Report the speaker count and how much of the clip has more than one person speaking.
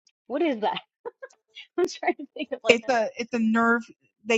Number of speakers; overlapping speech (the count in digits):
2, about 5%